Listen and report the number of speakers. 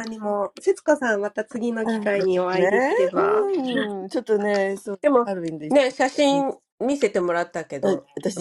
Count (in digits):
3